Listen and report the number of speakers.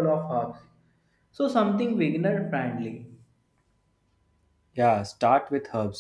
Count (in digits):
2